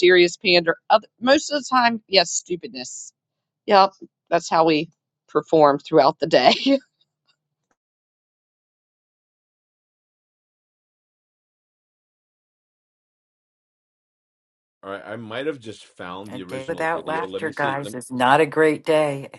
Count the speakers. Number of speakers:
three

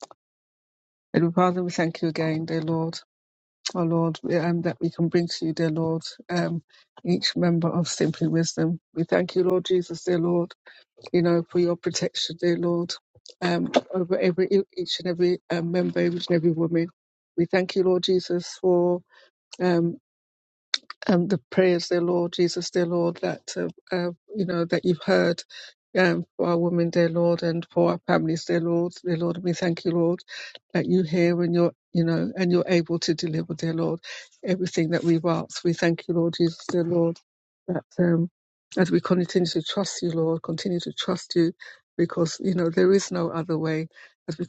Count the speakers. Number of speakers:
one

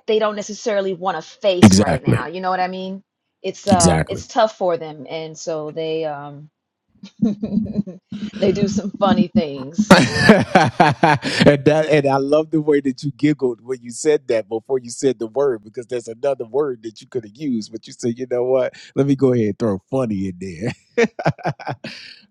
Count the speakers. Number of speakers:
two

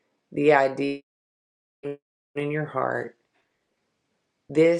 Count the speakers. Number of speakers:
one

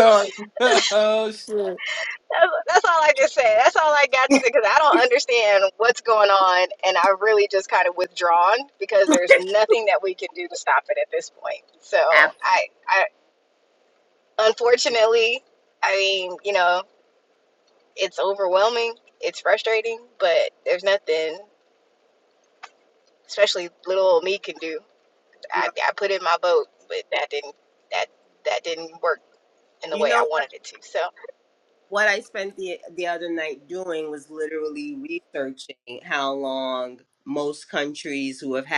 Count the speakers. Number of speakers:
three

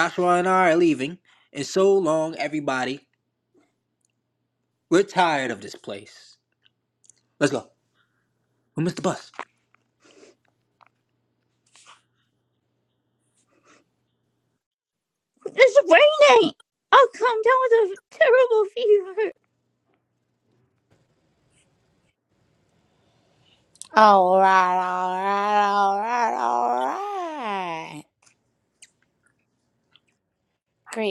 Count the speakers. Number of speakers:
three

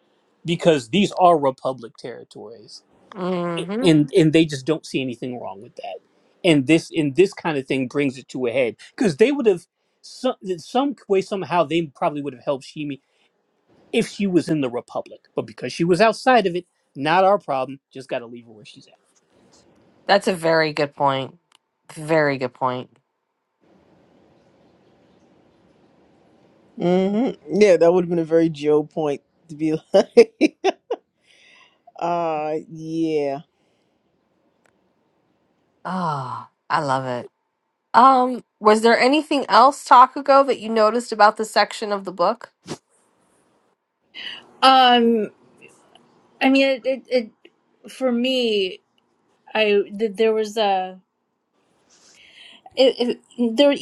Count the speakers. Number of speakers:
four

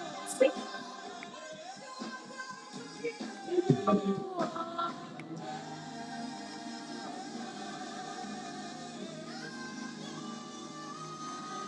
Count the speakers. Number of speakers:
zero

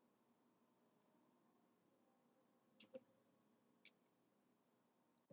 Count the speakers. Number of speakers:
zero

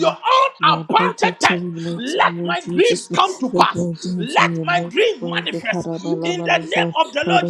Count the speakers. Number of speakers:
two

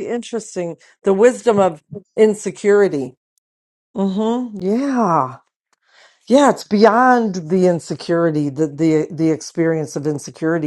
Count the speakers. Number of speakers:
one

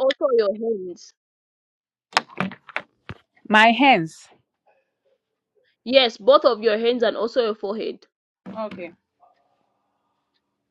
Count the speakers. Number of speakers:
two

